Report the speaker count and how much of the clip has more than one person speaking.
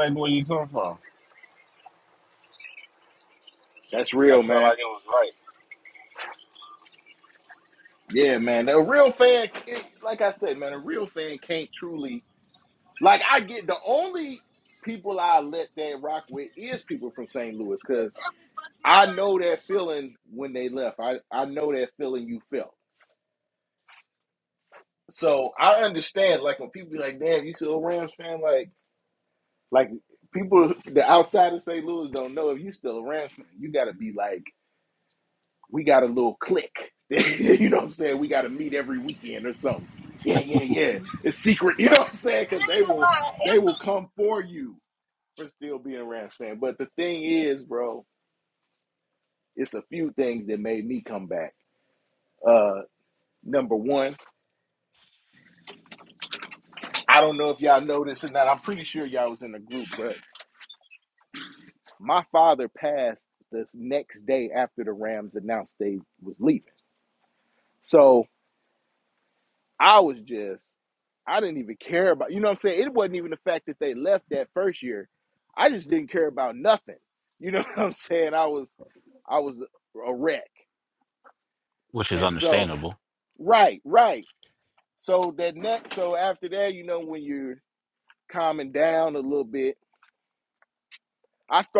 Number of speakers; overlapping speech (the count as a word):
three, about 1%